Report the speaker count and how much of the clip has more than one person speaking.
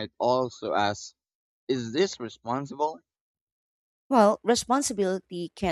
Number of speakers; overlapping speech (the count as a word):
two, no overlap